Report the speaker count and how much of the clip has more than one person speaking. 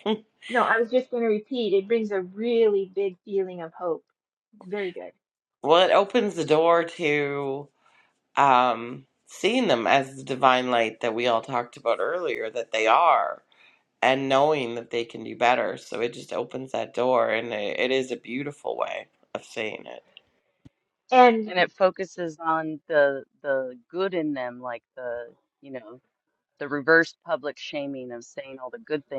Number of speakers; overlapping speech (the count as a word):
three, under 1%